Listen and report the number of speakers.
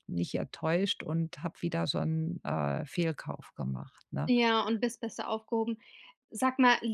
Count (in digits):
2